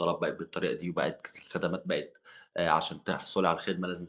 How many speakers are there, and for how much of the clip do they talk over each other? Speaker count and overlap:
1, no overlap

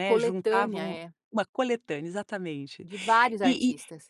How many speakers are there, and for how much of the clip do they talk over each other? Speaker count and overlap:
2, about 33%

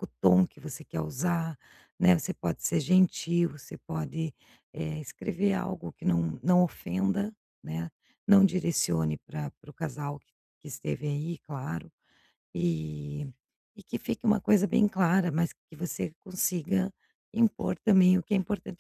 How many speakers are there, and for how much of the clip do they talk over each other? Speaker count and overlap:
1, no overlap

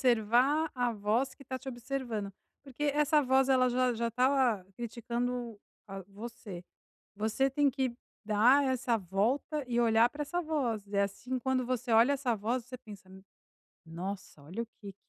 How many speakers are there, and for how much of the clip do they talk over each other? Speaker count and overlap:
1, no overlap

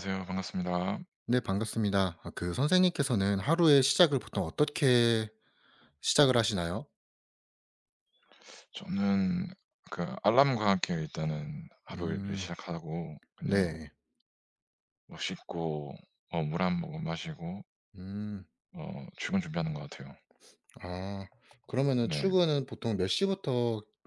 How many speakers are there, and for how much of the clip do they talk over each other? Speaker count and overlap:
2, about 5%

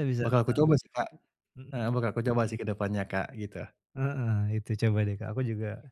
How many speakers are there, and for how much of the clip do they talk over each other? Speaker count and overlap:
2, about 11%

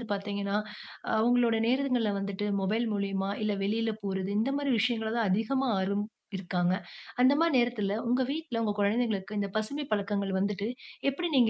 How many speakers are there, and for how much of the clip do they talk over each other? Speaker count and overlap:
1, no overlap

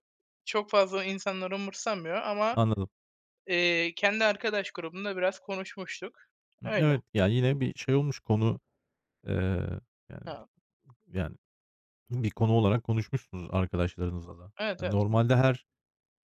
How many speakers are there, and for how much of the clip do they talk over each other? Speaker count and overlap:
2, about 7%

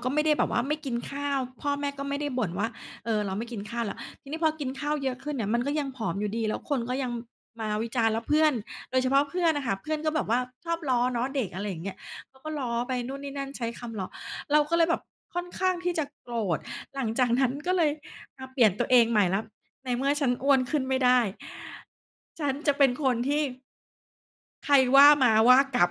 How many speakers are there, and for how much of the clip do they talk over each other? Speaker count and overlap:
1, no overlap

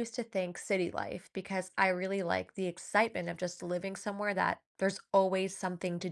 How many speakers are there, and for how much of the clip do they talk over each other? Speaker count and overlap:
1, no overlap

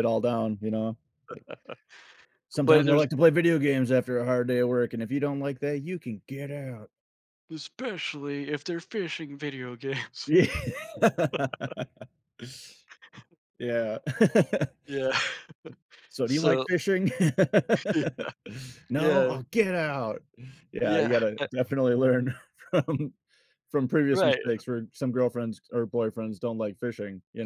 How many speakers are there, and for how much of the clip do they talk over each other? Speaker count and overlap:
2, about 8%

